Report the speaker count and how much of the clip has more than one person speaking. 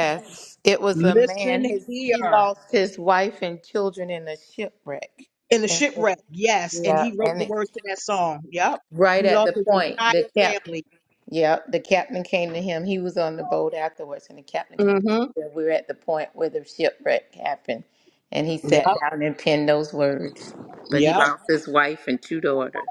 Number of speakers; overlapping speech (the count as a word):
two, about 22%